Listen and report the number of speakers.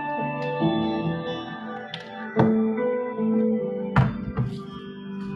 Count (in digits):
0